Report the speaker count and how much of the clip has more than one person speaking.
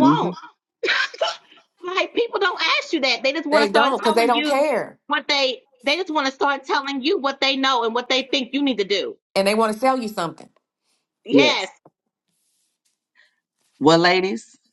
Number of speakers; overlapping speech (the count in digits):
3, about 11%